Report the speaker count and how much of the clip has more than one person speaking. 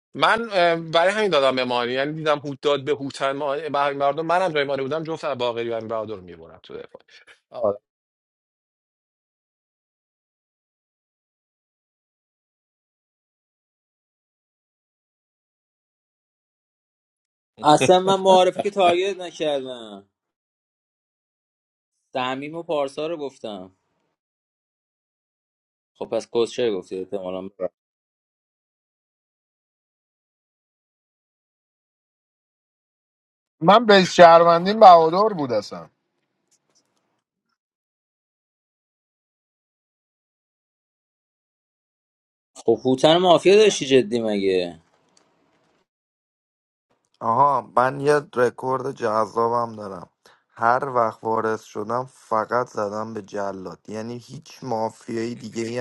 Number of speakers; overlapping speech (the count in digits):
4, no overlap